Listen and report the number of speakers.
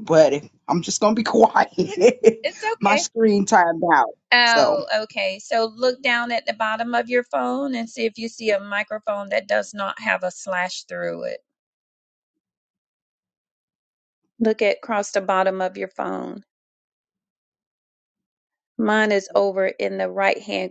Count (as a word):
two